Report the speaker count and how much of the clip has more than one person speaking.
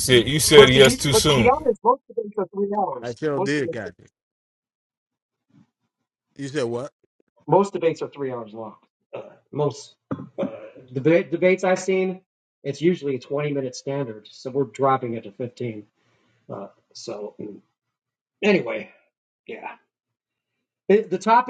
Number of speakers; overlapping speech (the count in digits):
3, about 8%